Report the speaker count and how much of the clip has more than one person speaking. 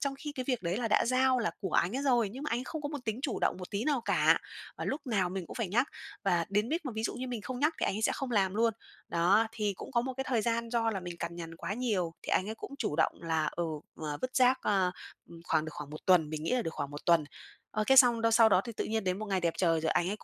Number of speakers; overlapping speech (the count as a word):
one, no overlap